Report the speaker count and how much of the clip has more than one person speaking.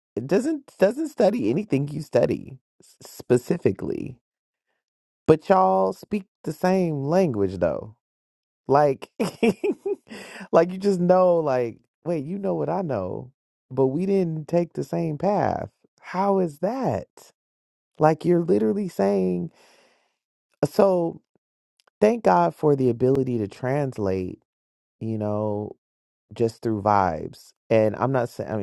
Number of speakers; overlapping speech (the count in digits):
1, no overlap